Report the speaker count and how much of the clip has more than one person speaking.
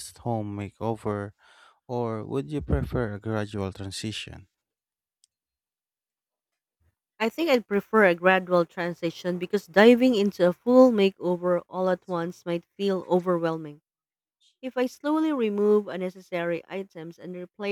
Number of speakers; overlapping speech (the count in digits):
2, no overlap